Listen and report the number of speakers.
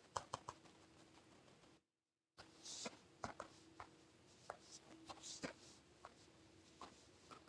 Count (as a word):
zero